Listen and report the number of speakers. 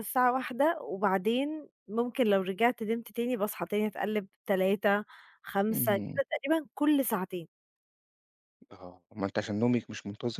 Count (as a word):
two